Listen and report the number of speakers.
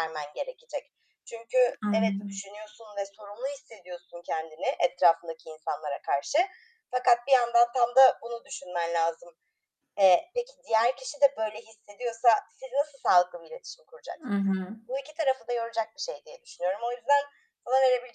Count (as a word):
two